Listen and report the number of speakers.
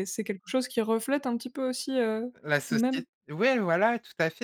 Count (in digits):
2